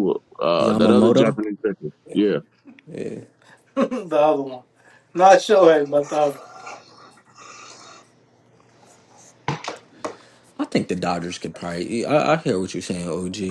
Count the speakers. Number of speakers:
three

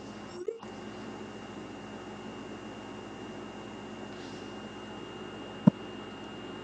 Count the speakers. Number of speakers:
zero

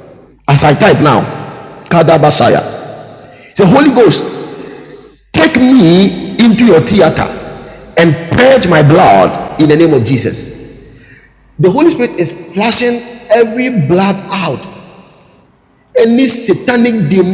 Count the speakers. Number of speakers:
one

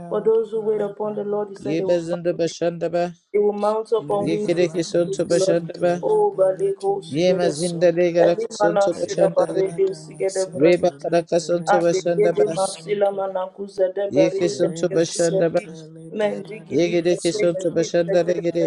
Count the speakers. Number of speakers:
two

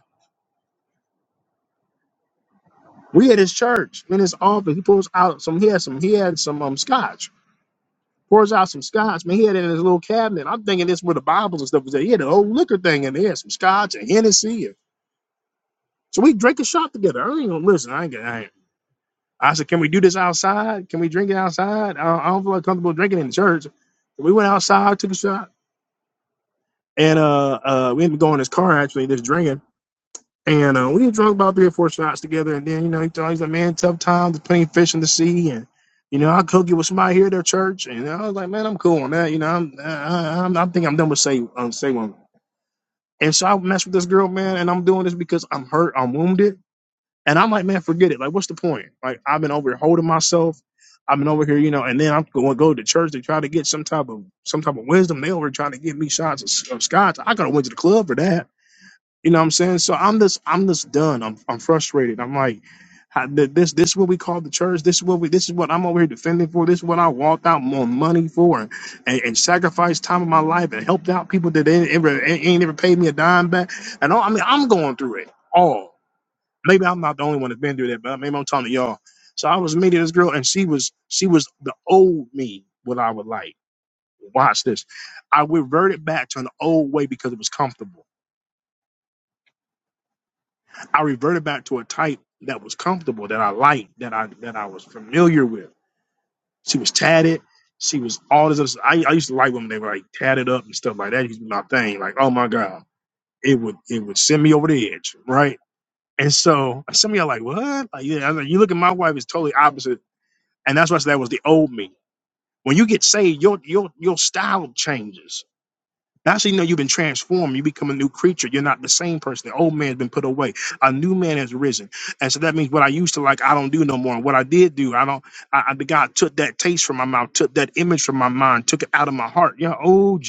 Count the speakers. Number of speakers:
one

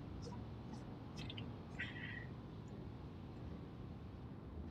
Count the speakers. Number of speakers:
zero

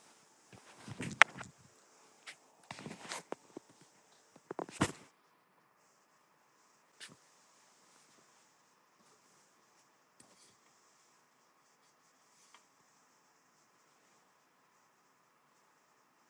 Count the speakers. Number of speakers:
zero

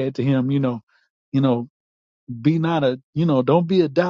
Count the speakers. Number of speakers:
one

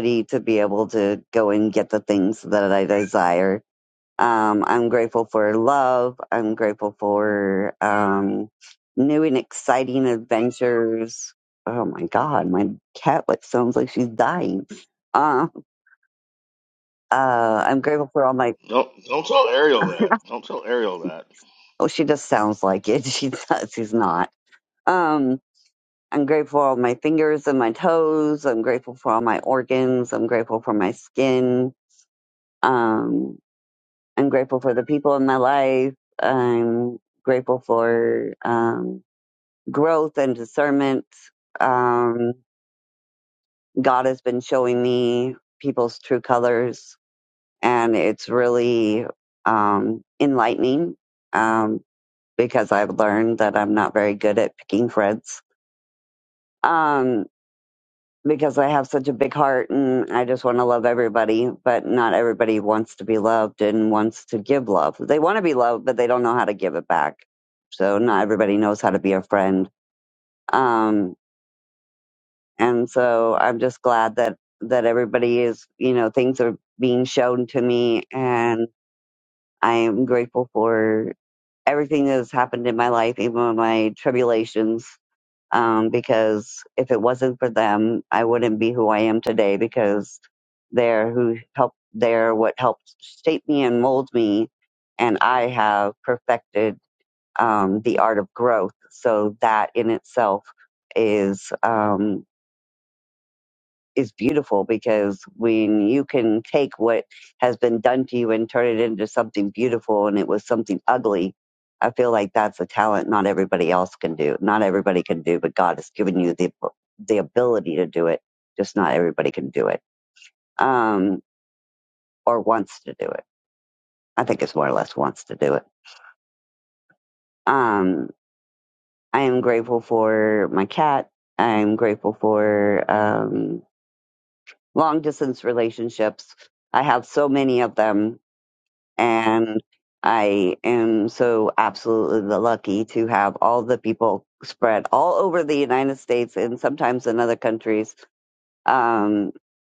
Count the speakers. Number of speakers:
two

